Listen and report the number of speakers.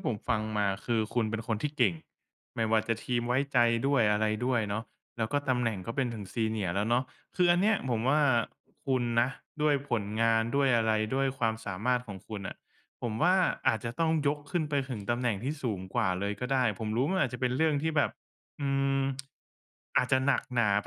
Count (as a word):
one